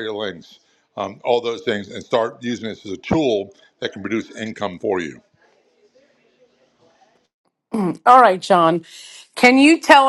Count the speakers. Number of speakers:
2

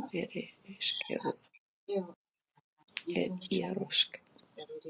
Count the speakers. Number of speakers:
2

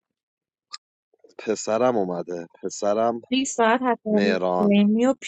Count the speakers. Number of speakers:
2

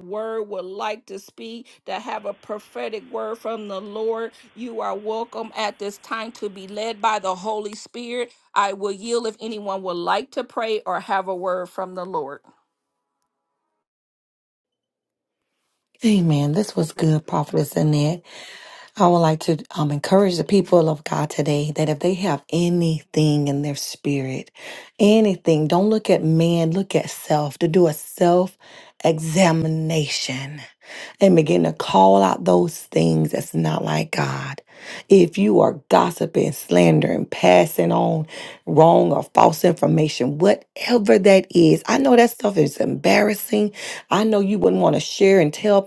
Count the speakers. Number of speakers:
2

